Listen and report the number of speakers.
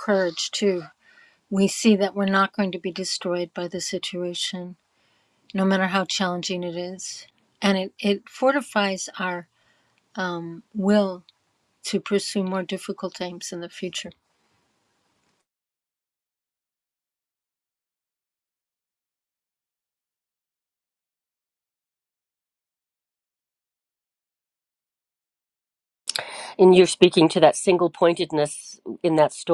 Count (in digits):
2